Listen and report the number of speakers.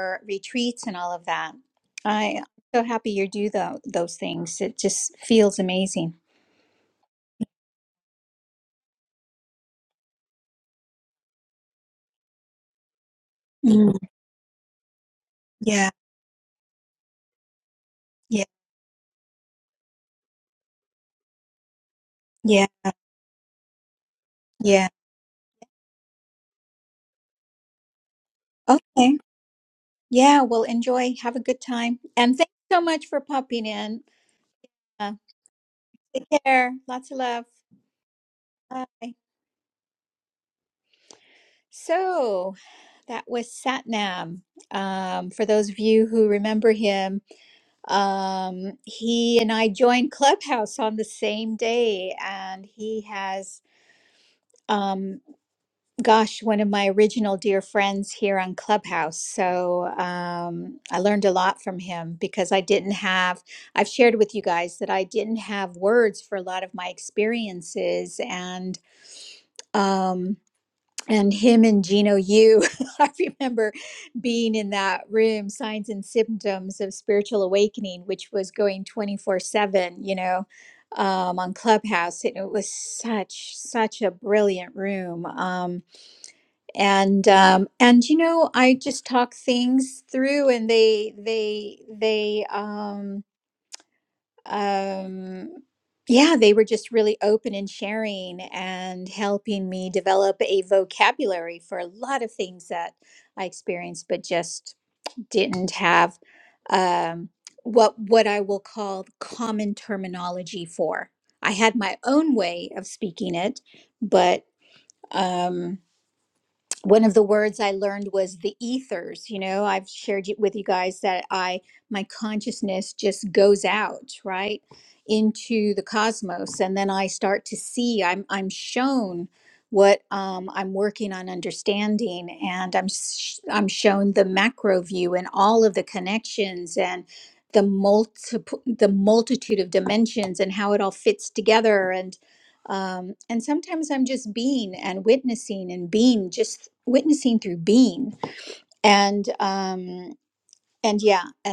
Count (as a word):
one